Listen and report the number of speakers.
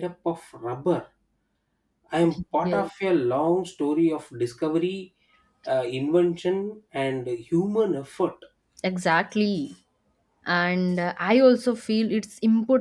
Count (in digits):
2